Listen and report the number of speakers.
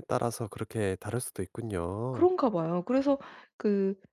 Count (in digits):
2